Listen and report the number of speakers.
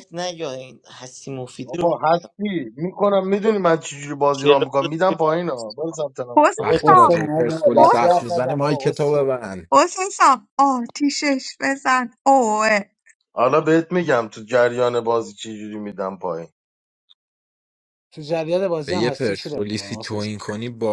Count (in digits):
5